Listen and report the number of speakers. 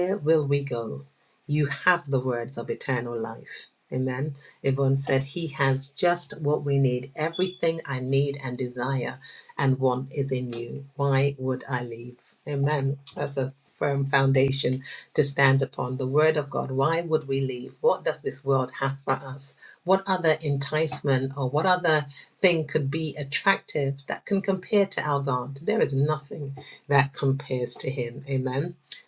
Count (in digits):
1